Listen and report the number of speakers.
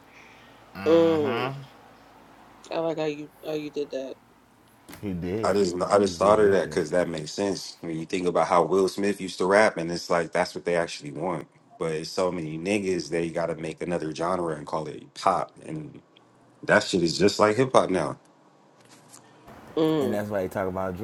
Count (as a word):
three